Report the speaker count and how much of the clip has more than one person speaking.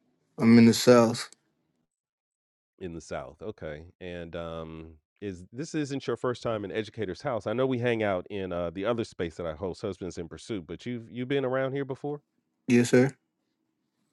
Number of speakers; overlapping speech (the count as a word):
two, no overlap